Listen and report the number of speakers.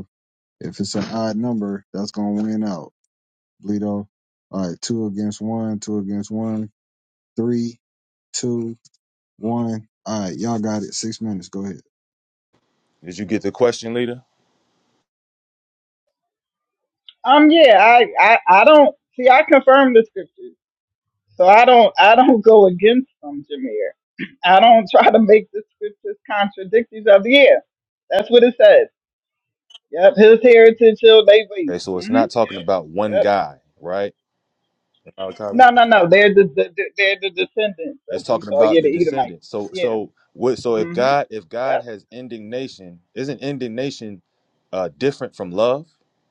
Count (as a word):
three